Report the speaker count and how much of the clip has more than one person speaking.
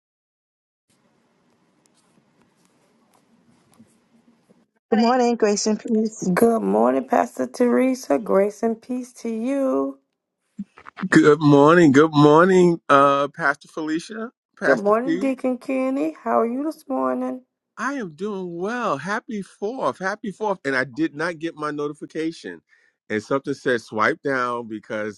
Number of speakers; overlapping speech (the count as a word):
three, about 3%